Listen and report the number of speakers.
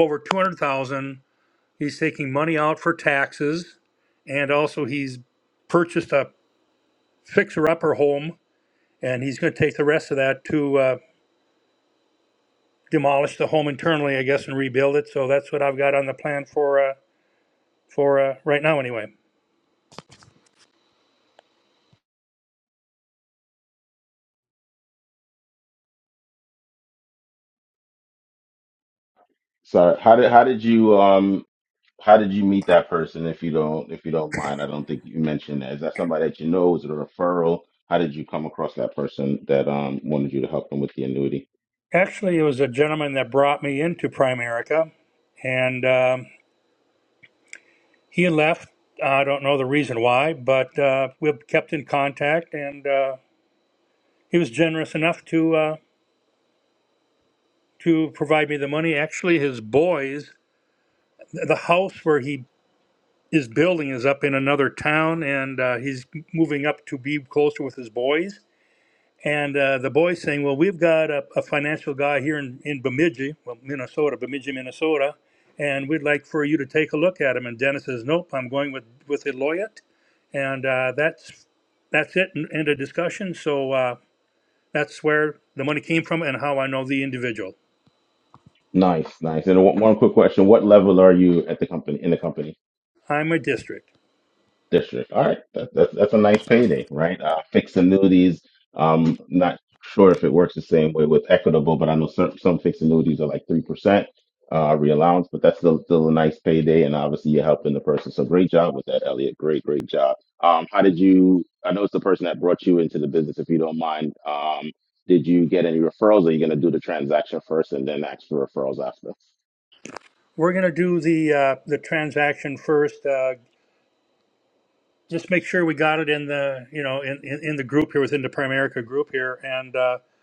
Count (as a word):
two